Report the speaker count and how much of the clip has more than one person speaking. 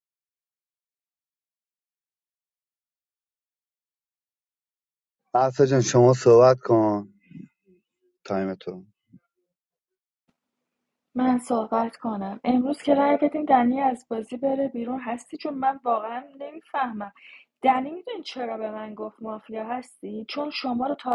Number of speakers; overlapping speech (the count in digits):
2, no overlap